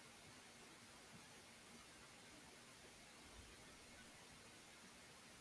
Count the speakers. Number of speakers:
zero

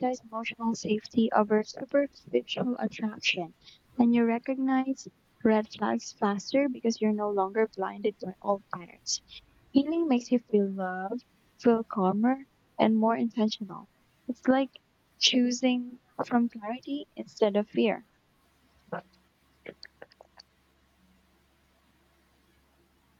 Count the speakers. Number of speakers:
one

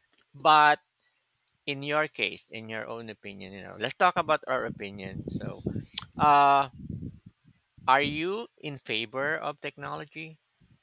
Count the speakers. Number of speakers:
one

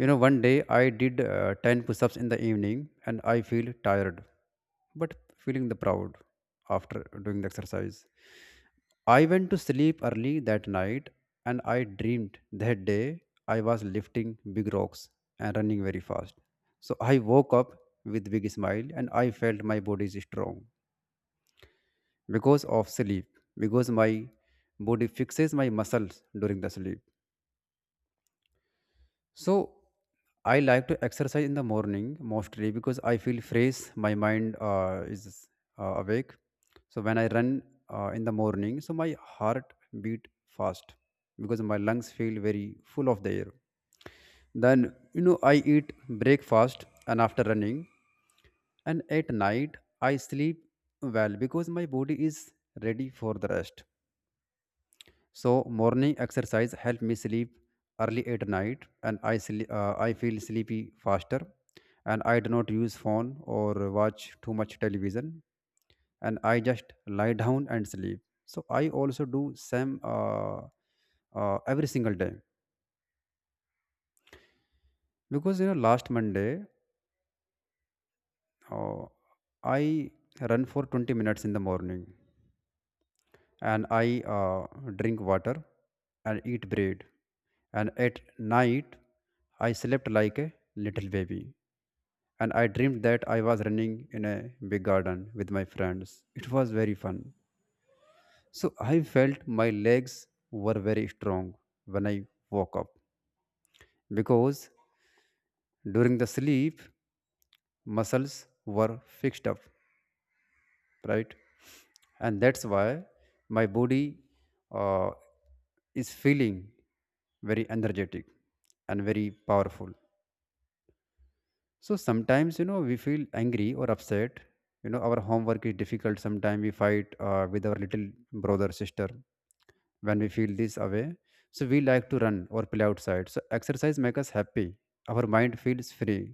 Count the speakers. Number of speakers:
one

